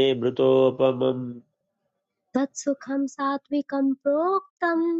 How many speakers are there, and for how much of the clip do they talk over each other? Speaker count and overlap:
2, no overlap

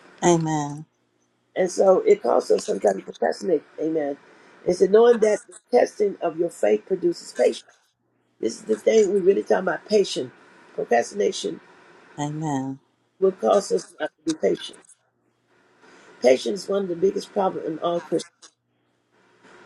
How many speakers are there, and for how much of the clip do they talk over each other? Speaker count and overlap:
2, no overlap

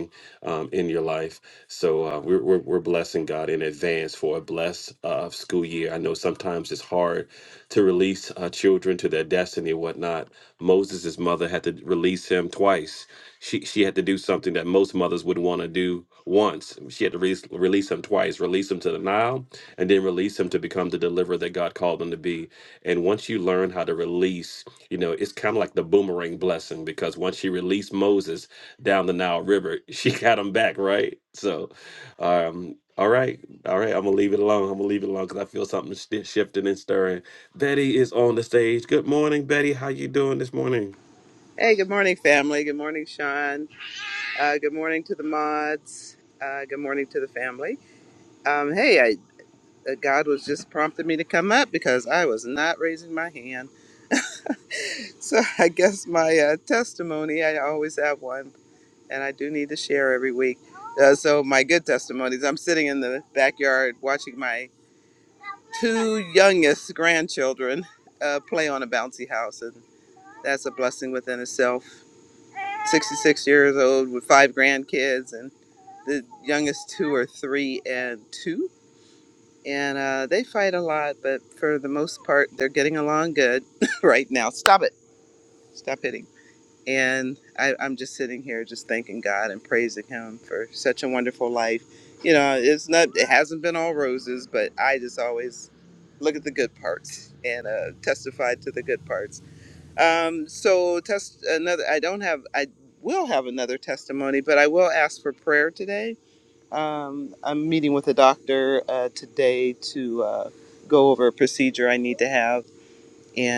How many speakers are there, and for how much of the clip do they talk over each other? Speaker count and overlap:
2, no overlap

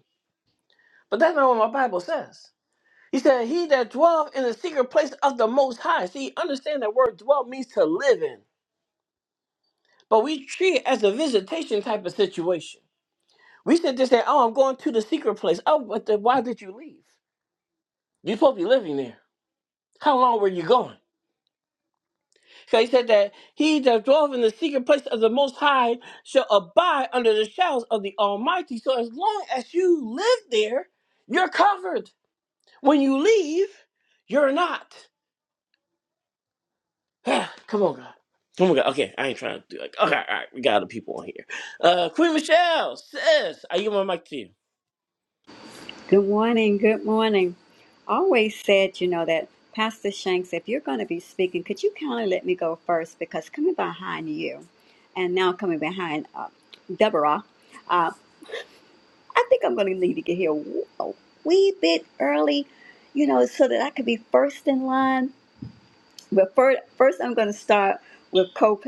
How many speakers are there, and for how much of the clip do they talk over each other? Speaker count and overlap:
2, no overlap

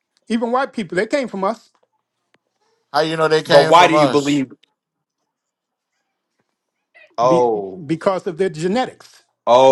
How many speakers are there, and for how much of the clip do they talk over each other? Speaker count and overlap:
3, about 10%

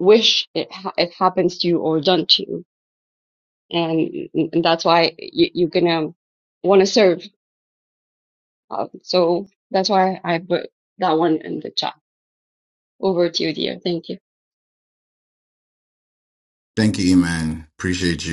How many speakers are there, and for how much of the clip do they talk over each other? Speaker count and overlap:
2, no overlap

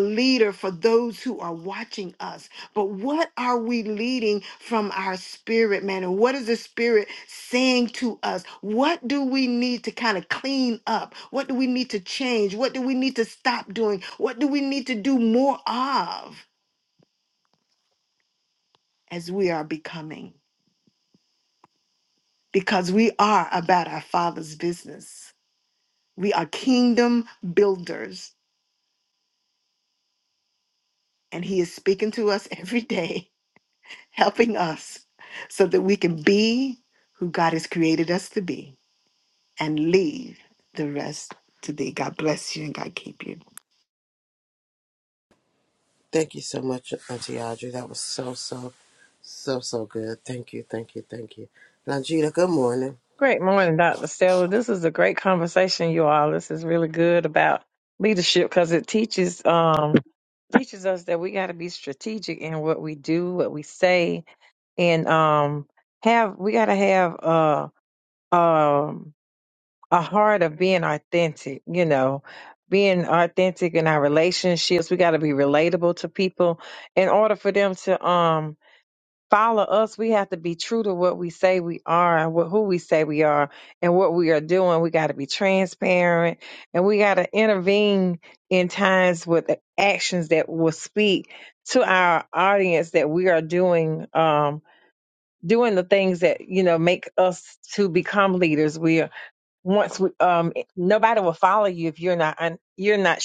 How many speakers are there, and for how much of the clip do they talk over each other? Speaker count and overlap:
3, no overlap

